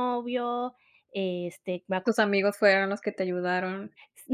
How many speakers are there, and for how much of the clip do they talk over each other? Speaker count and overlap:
2, about 1%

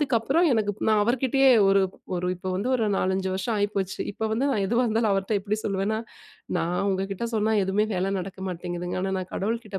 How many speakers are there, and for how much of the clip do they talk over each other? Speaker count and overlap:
1, no overlap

